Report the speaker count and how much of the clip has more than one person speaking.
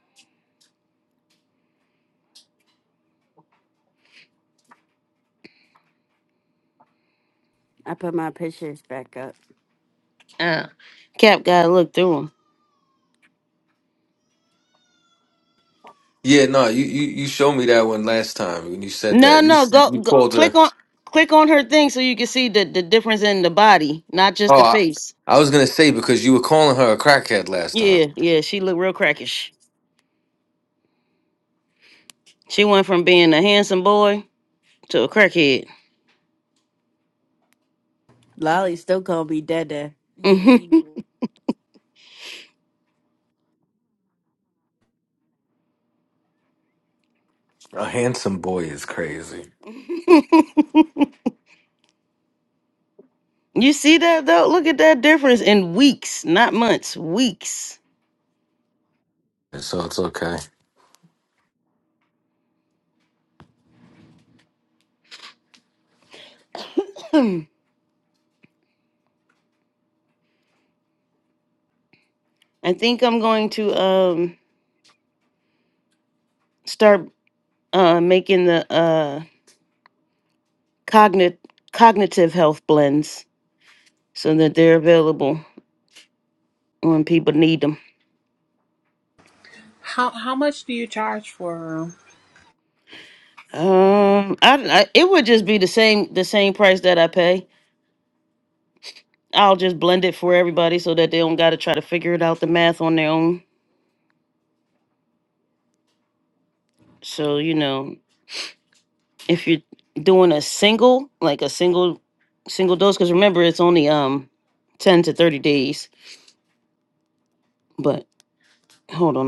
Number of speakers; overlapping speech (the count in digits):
4, about 1%